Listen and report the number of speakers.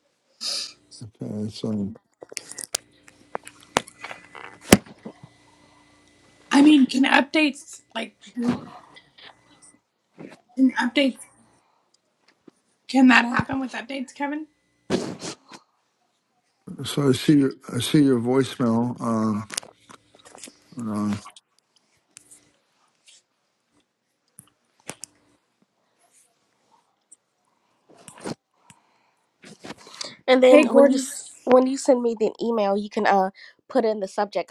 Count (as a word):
three